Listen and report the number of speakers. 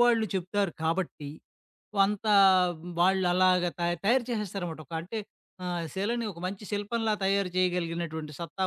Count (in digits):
1